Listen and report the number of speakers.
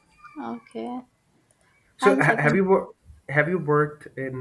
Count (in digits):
2